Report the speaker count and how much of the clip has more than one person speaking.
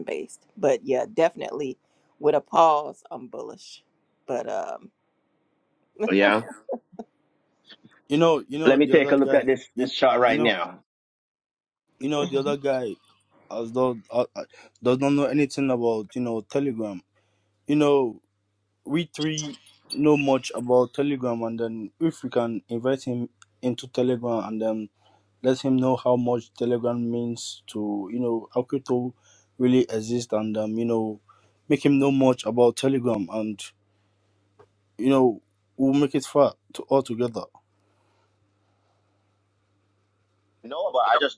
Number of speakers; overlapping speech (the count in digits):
3, about 4%